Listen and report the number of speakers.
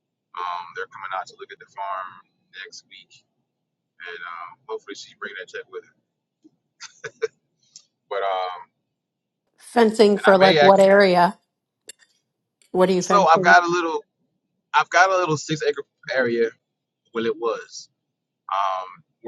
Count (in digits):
2